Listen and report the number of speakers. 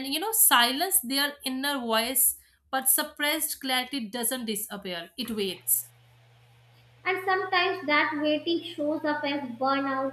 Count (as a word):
two